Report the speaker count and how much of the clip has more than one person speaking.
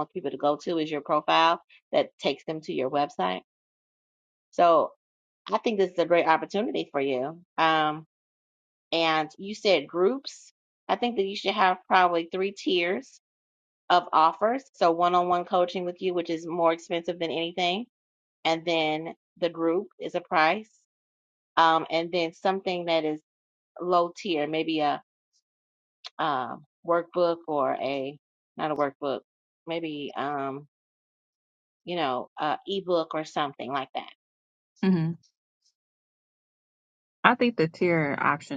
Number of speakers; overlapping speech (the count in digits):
2, no overlap